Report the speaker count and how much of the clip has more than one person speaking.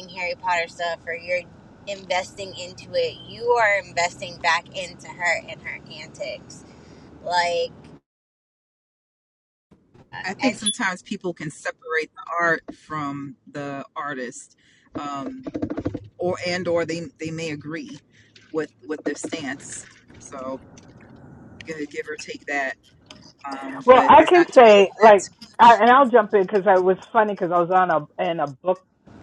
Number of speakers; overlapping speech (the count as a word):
three, about 7%